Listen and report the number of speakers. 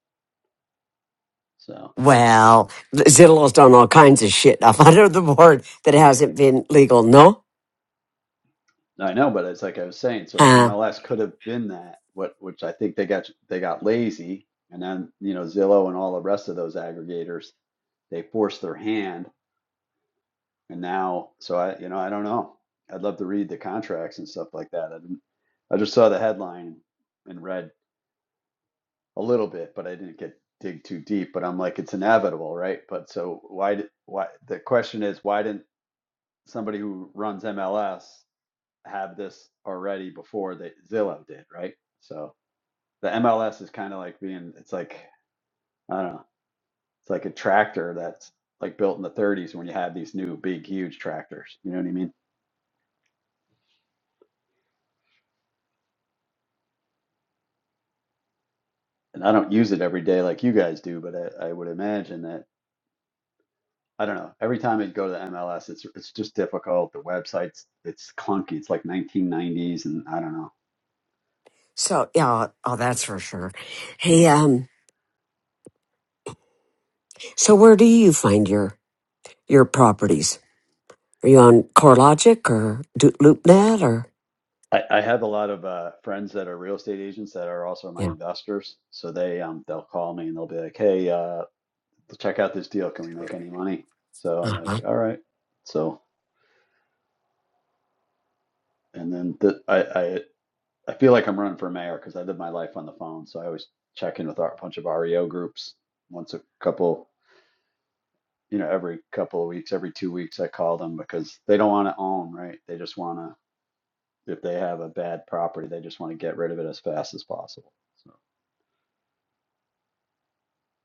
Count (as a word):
two